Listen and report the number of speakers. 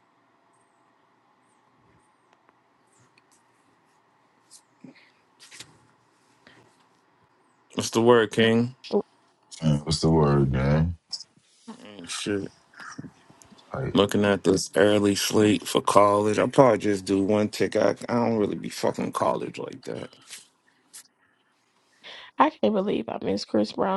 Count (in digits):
3